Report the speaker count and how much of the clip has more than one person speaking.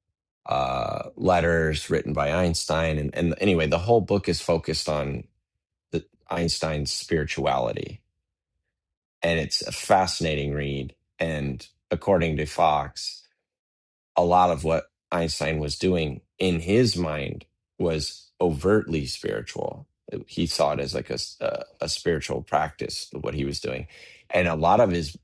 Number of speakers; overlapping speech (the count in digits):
1, no overlap